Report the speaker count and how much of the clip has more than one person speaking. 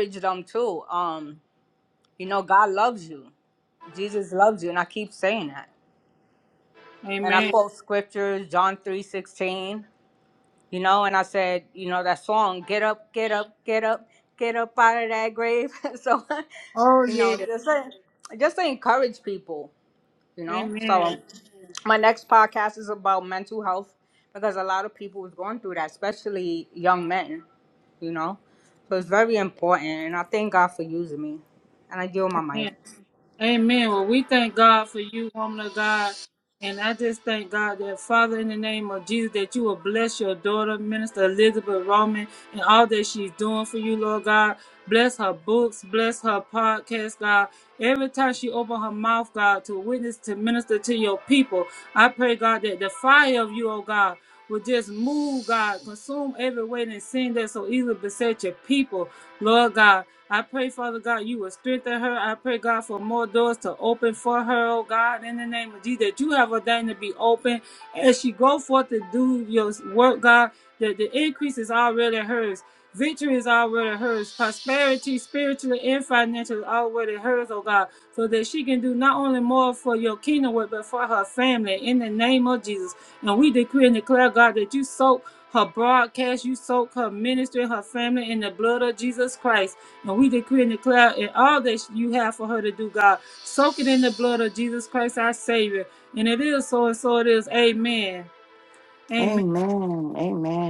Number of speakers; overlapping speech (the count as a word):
three, about 2%